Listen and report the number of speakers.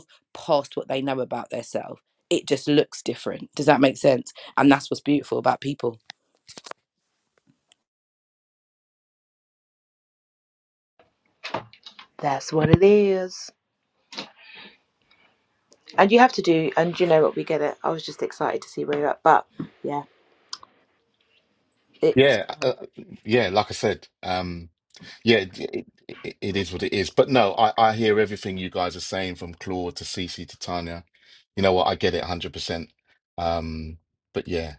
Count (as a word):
three